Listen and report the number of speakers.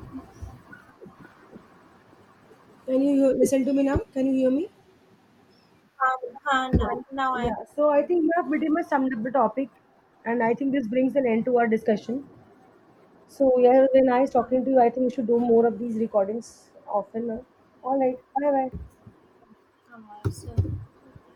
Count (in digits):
2